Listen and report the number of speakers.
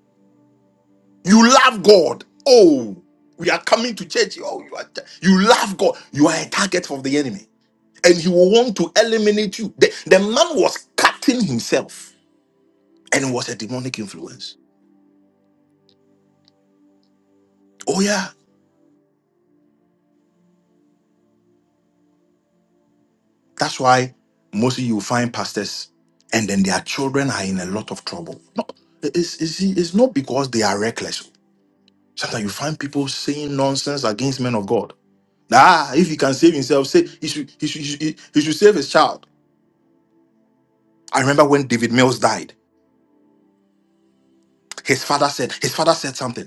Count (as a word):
one